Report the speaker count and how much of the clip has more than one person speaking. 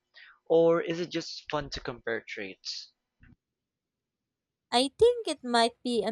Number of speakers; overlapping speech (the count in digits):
2, no overlap